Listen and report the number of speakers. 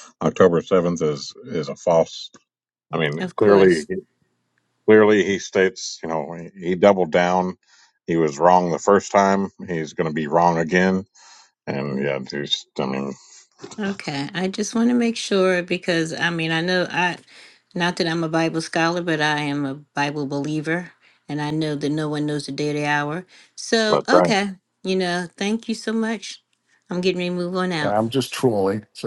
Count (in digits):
3